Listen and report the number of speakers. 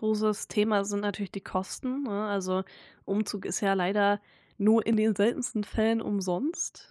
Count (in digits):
1